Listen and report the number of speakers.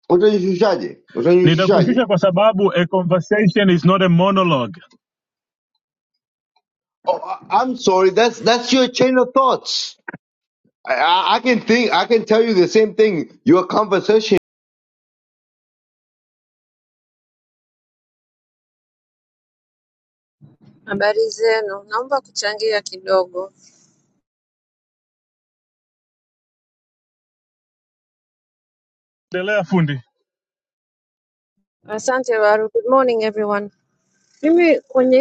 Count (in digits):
3